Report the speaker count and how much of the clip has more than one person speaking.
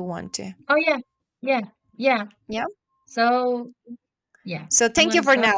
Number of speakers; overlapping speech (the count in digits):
2, about 15%